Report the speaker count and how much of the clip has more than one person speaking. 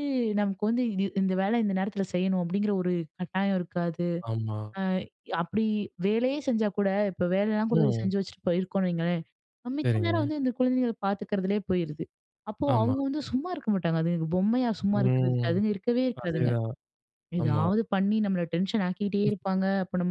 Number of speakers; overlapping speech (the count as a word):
two, about 12%